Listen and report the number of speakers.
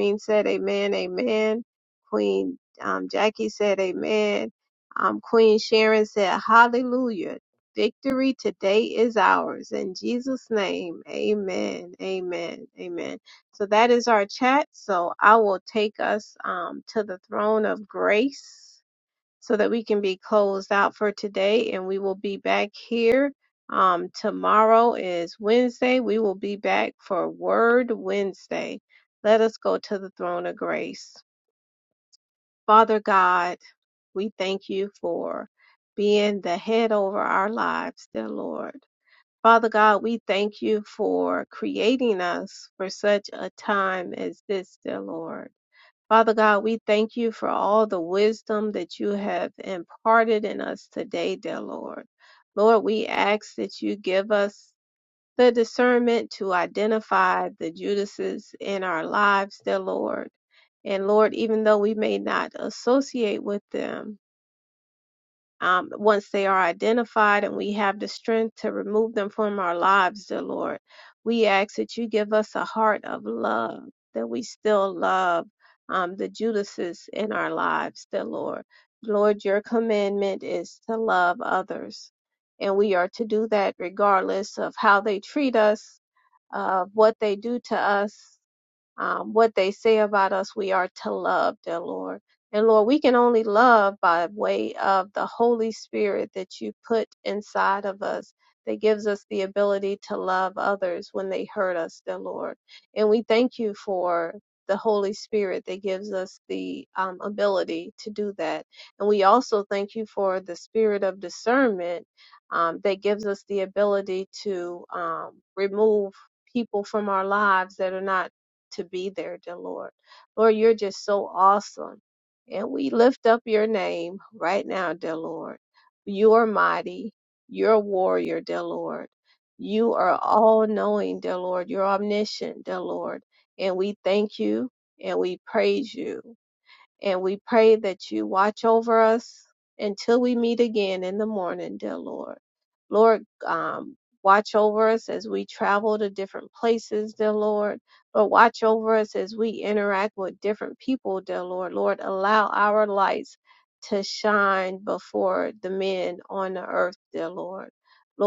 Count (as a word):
one